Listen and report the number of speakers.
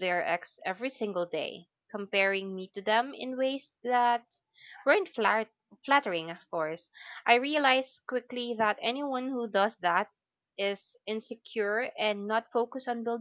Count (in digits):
1